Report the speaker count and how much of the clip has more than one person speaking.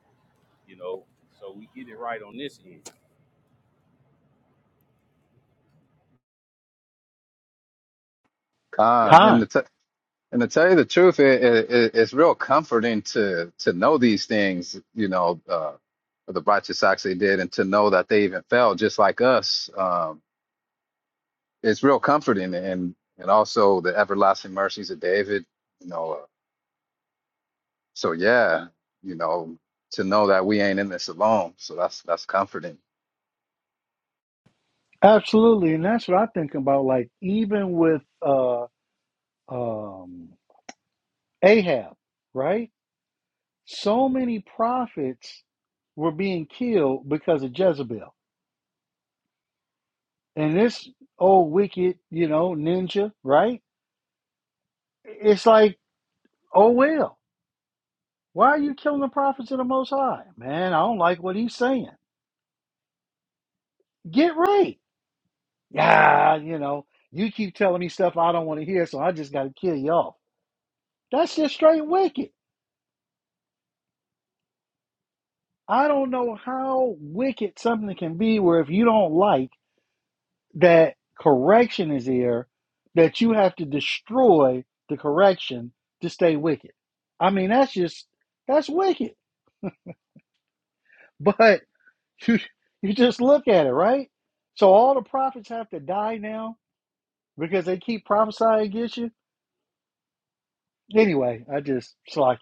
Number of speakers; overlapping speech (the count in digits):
3, under 1%